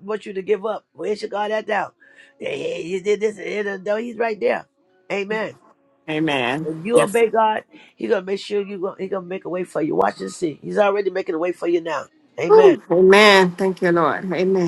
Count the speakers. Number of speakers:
two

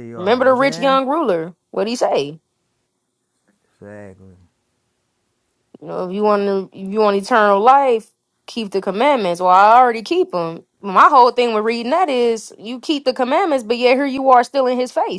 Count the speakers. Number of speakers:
two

